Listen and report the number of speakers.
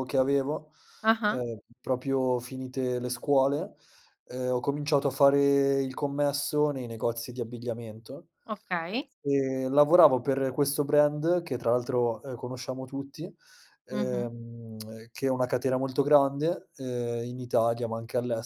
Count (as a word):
two